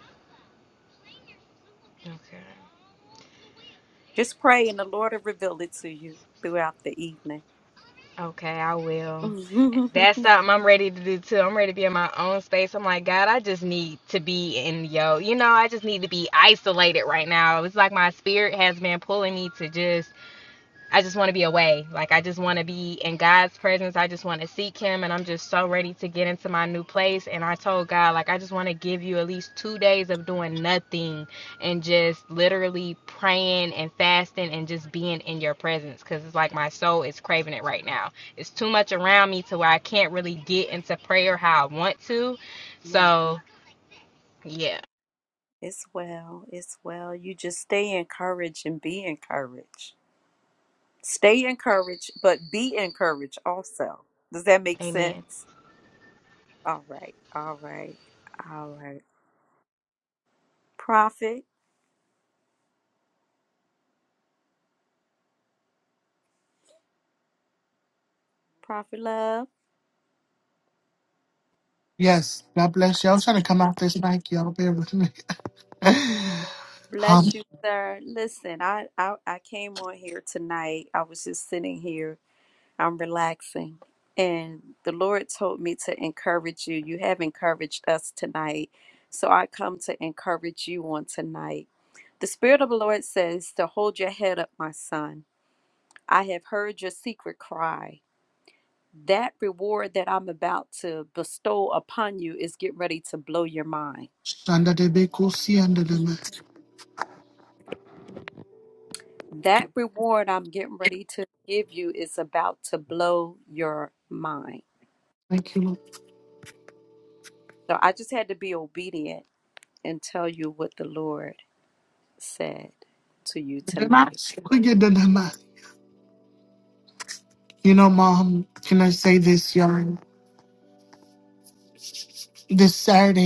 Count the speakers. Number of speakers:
3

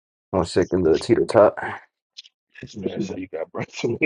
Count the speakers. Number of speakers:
2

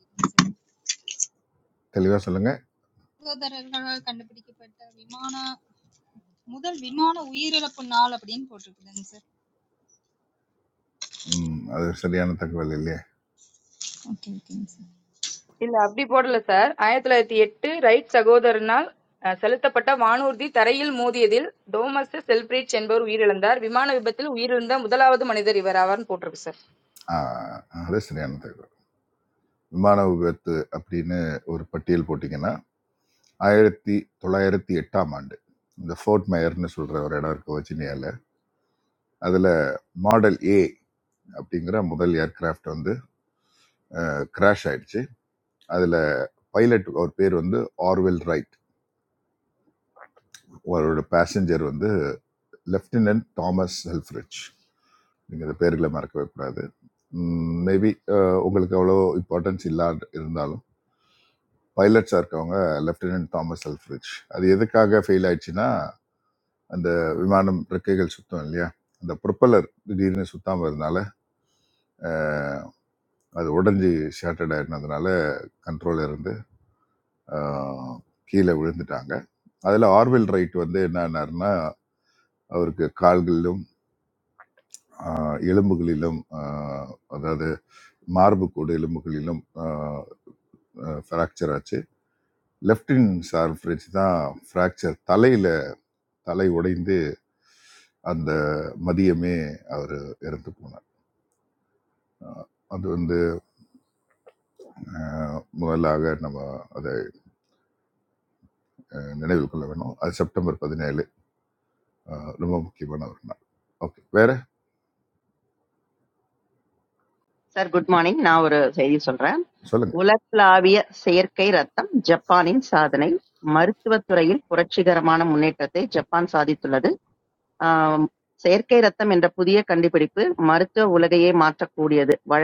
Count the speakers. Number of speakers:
4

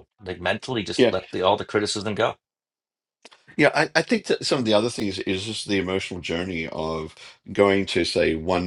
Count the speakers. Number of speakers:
2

